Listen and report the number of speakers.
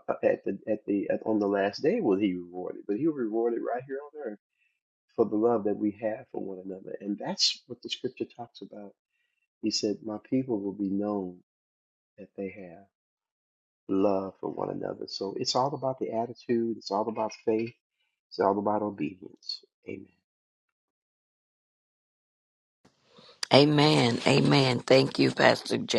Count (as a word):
two